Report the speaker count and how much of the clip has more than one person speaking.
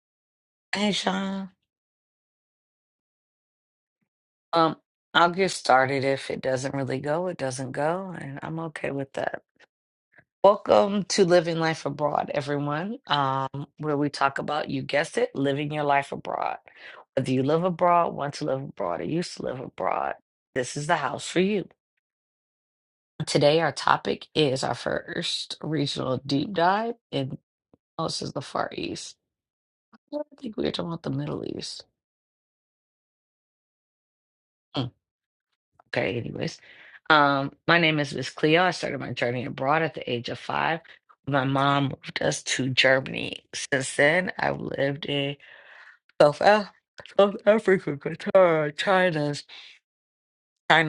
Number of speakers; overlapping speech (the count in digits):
1, no overlap